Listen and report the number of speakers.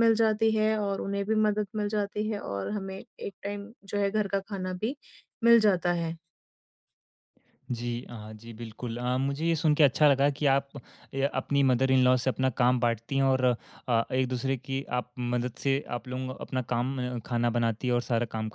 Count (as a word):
two